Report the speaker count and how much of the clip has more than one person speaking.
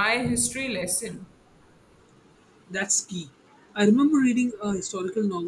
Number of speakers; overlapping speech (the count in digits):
2, no overlap